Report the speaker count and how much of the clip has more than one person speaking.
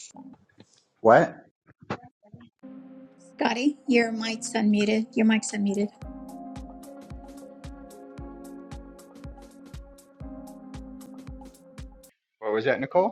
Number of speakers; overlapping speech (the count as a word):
two, no overlap